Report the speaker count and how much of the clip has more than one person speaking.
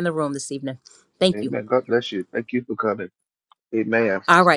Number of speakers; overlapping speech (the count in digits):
2, about 4%